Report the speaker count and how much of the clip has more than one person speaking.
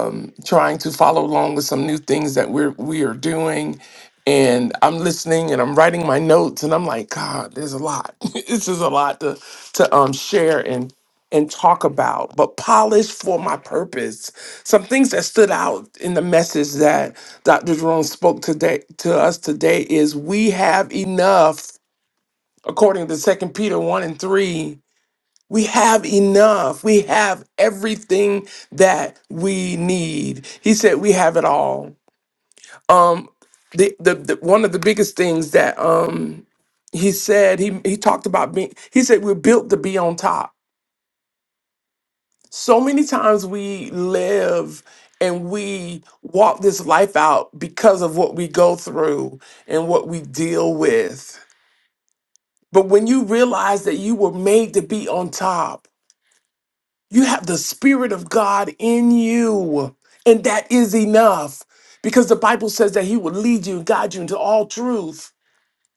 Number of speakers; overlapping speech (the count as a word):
one, no overlap